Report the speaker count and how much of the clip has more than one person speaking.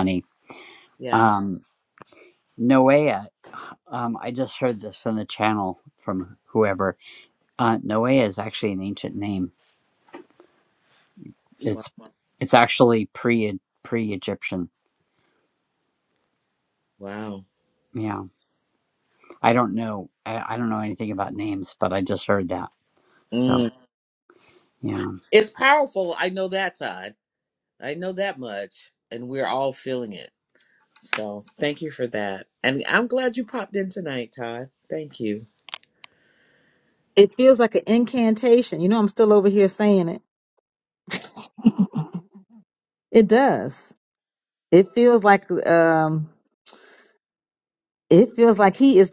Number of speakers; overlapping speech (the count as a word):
three, about 1%